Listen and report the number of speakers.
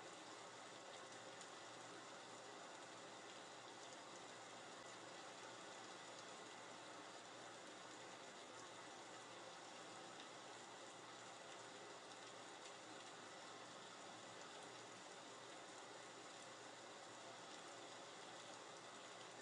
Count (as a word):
zero